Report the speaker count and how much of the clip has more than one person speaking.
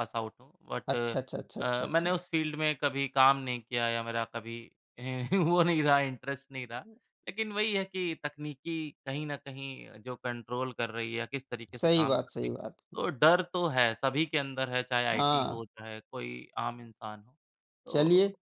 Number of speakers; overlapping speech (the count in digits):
2, about 12%